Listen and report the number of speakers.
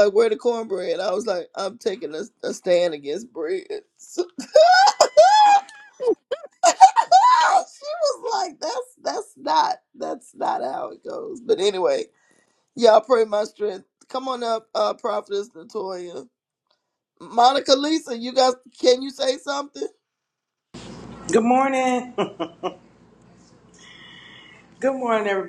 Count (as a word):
two